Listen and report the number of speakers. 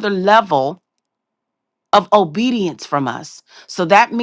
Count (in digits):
1